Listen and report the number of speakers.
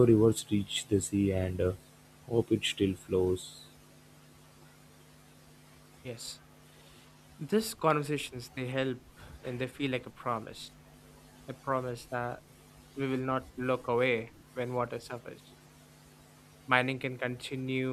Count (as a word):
two